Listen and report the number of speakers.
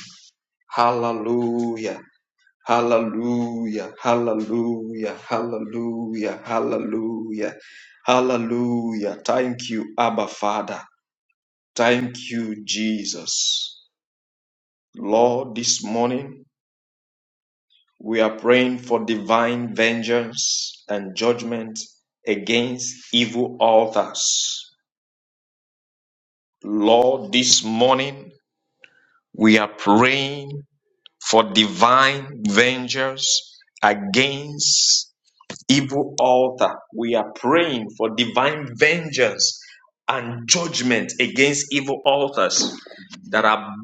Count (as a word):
one